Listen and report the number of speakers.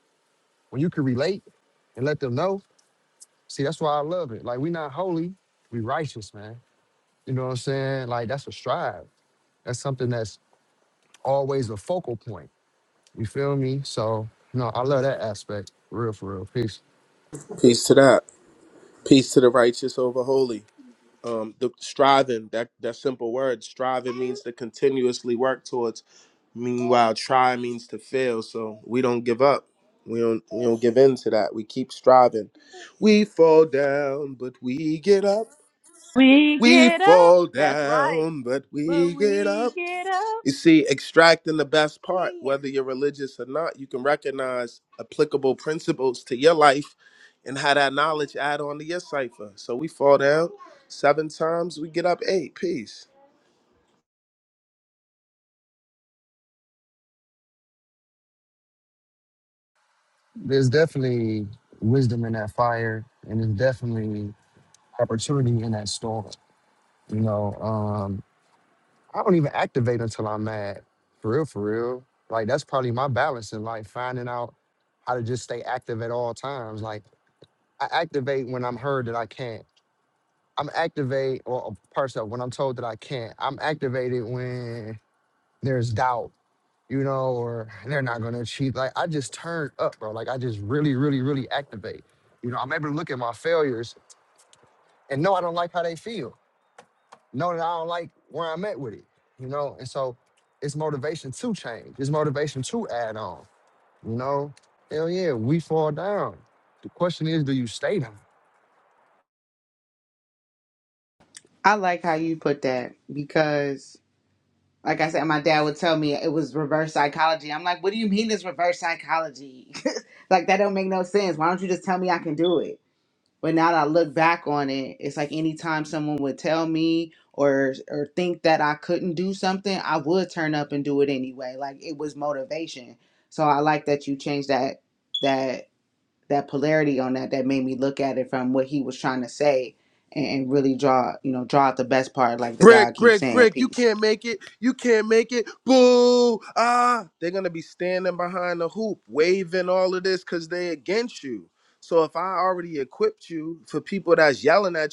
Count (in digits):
4